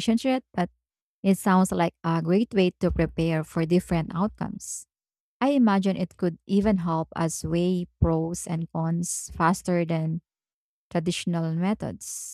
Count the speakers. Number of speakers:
one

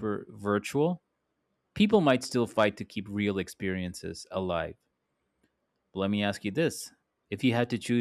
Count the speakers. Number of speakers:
one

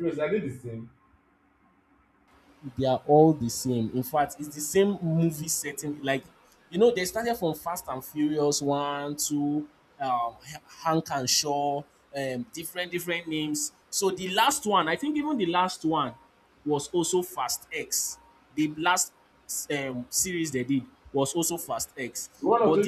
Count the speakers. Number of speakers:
two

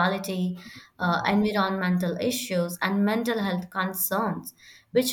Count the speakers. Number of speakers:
one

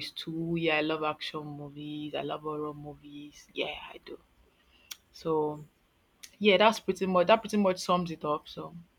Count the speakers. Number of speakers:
one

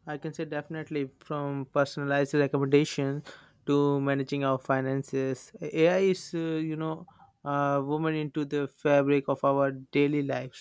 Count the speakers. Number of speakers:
one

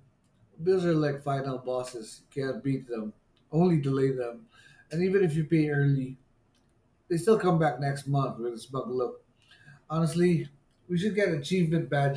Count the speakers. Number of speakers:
one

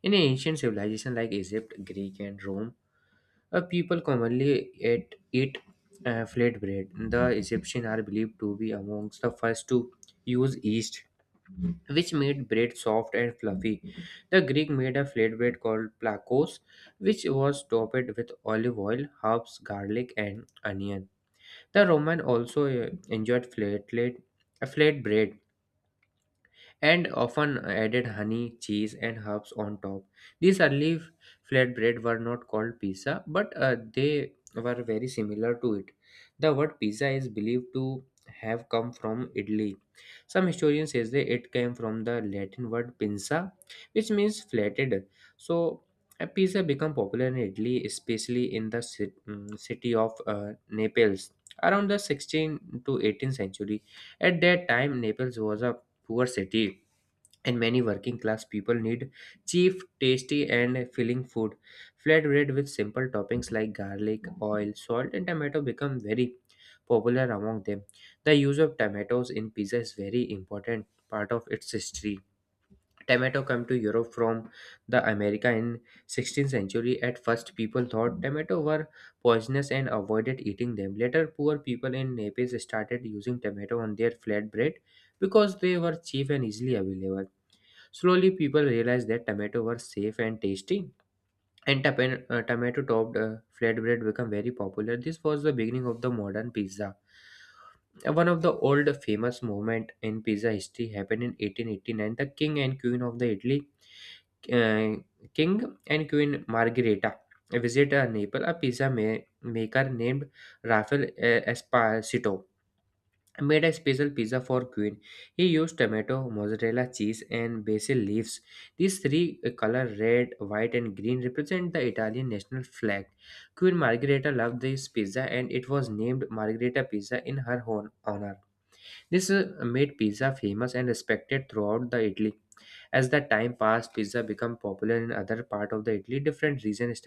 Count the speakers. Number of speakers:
one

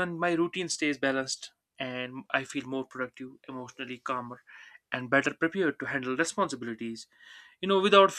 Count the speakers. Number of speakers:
one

